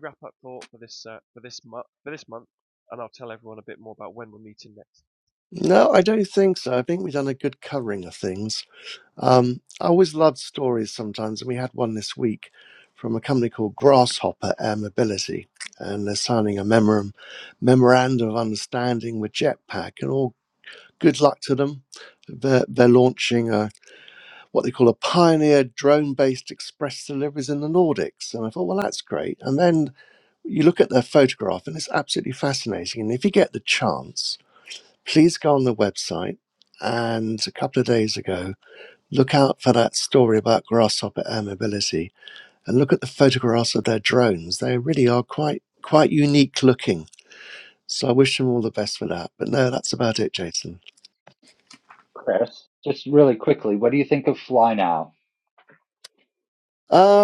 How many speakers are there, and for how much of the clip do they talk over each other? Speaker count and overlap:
3, no overlap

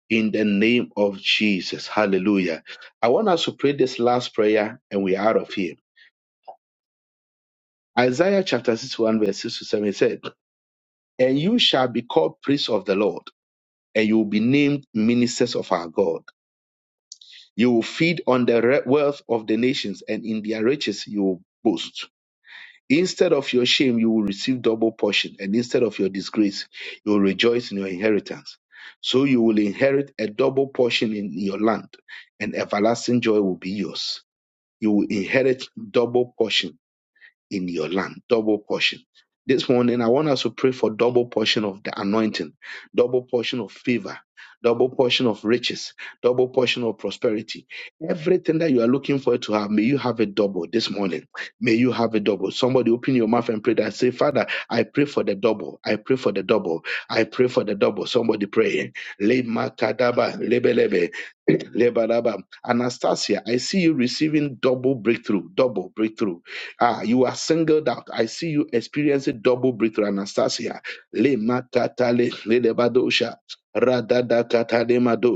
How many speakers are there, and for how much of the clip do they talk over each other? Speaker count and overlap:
1, no overlap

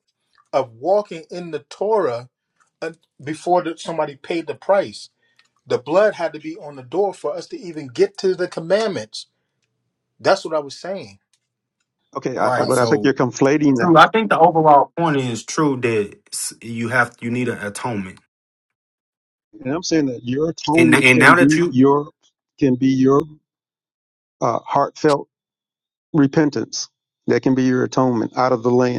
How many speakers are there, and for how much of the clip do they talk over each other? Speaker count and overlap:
3, about 6%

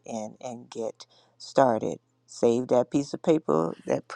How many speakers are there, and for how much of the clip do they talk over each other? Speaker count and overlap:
1, no overlap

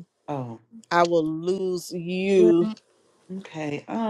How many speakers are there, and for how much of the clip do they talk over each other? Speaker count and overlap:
2, about 4%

